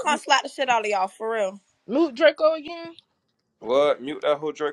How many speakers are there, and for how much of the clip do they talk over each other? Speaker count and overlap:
3, about 4%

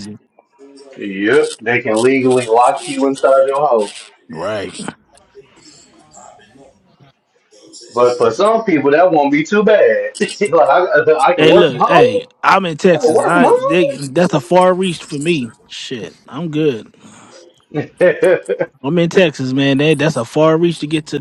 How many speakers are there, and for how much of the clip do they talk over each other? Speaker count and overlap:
2, about 8%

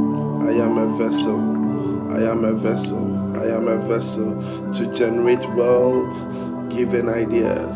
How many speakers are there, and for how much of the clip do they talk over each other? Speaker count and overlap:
1, no overlap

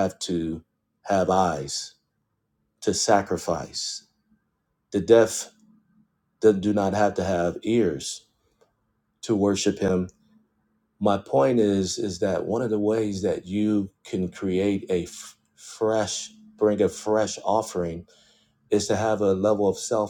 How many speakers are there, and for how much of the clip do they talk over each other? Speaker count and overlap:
1, no overlap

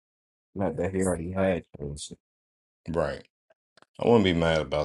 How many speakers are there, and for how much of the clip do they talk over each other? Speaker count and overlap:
2, no overlap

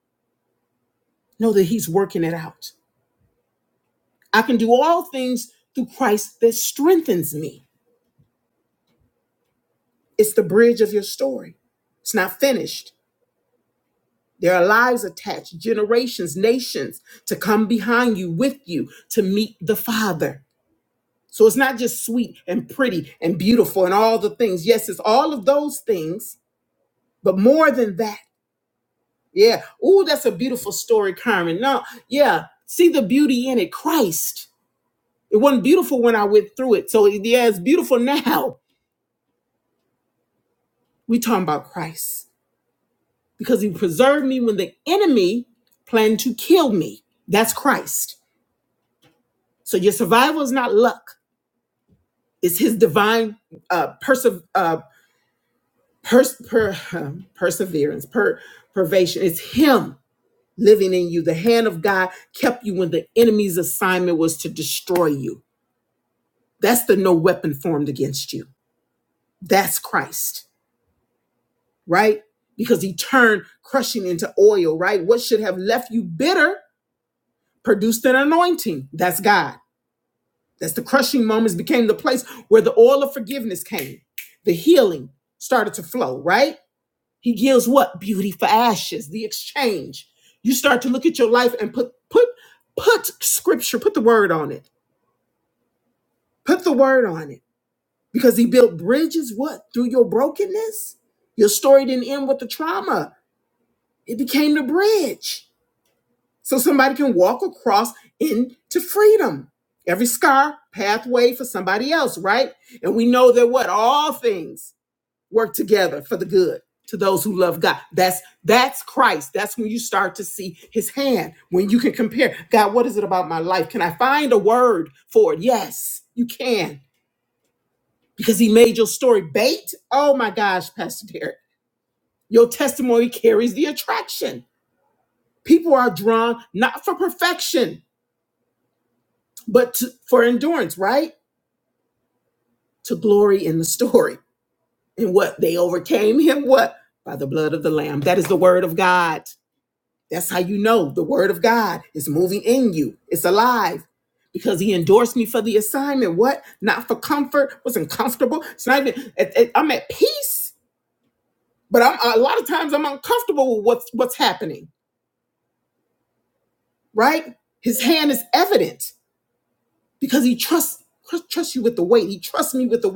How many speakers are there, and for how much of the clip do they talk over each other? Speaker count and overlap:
1, no overlap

